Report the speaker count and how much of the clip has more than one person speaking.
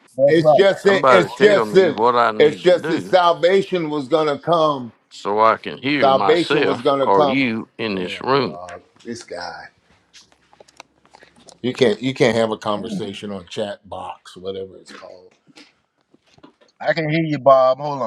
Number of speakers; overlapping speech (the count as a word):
three, about 24%